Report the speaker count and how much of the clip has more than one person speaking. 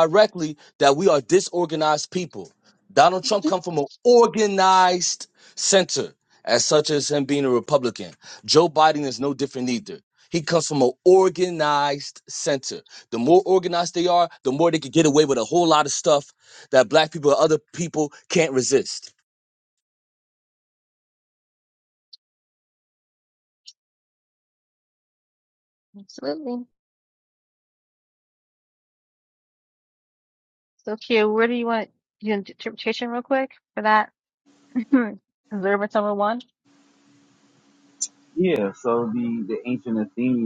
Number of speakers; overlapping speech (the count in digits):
3, under 1%